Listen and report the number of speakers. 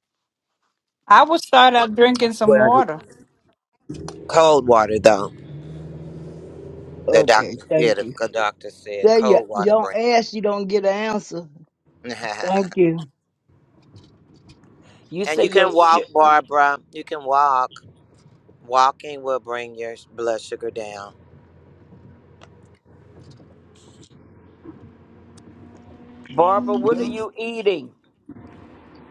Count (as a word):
four